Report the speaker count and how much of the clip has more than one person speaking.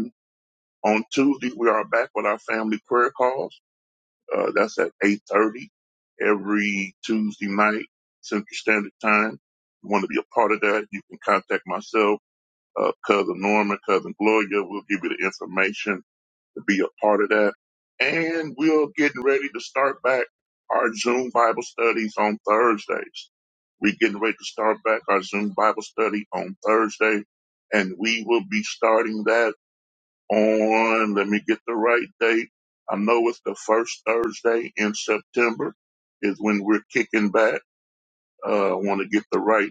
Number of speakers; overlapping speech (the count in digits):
1, no overlap